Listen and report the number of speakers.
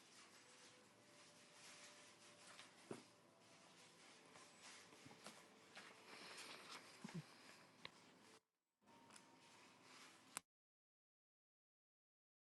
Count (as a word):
zero